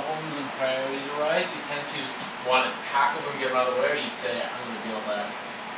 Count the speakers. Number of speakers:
1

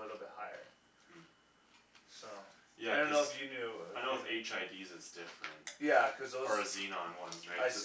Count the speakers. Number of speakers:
2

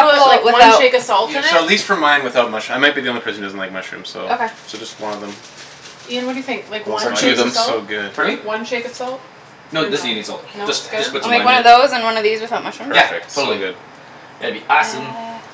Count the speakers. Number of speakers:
4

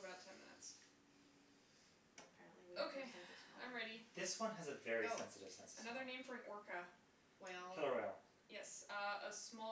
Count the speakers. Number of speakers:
3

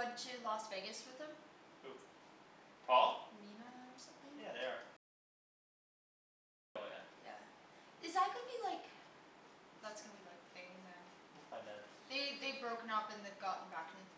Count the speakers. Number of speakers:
2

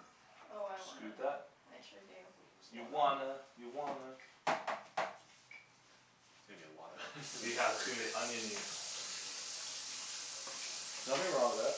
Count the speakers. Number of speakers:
3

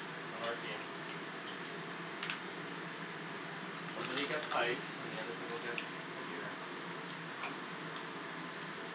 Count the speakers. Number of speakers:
1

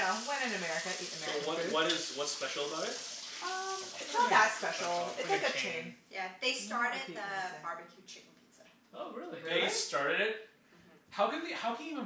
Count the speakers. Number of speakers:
4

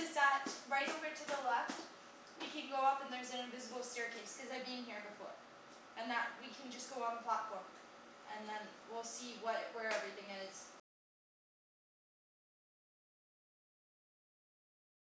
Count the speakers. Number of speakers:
1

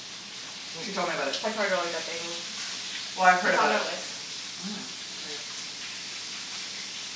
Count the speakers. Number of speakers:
2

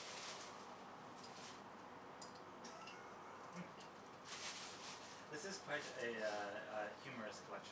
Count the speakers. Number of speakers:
1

